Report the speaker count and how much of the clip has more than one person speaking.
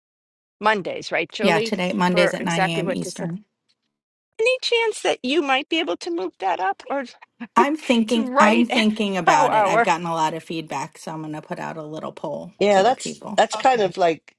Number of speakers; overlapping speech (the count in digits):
3, about 27%